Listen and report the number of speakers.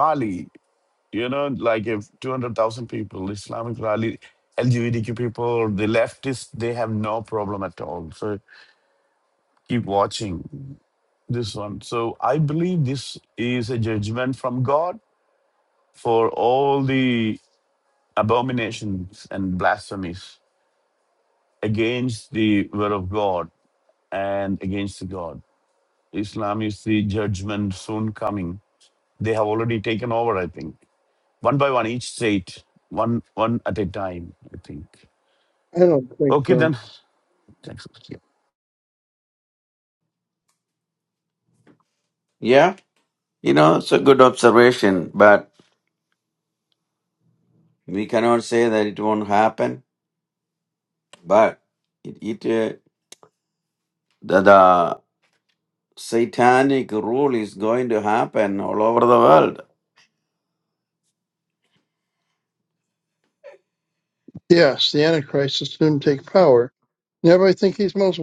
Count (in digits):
3